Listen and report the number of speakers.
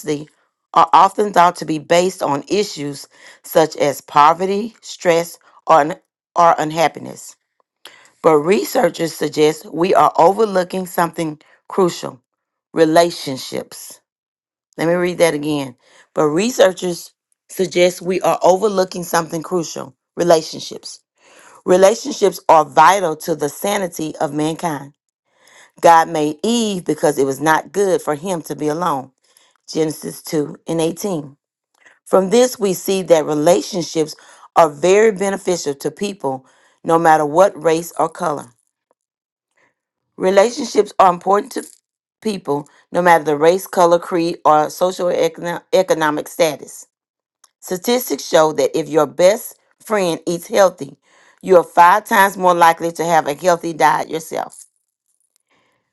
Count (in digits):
1